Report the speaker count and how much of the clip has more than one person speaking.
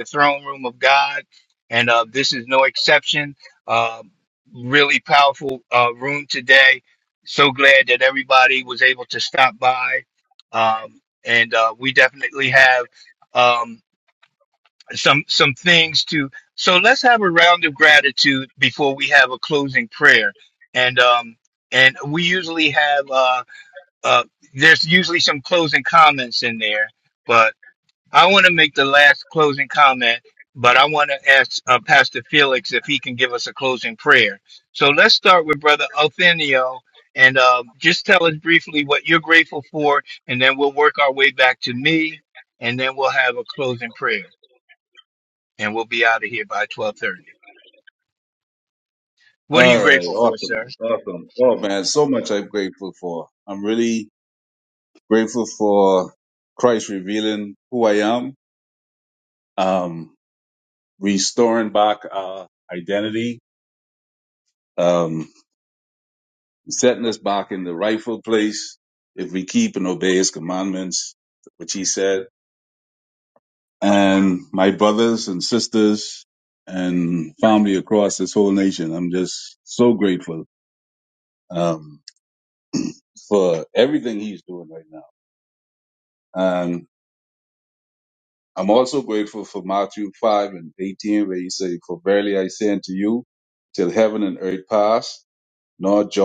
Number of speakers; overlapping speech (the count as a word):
two, about 1%